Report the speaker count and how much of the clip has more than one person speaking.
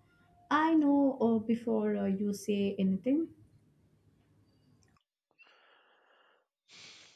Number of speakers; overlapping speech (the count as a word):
one, no overlap